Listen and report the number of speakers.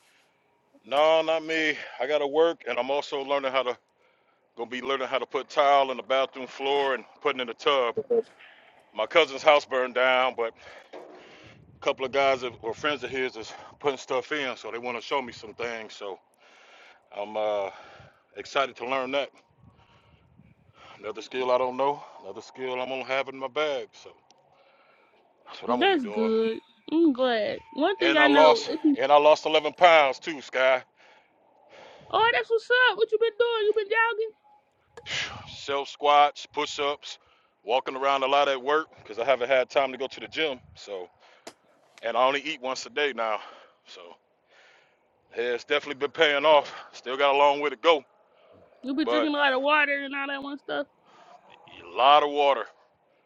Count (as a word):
two